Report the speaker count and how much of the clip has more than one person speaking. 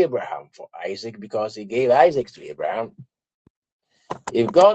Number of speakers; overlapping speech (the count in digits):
1, no overlap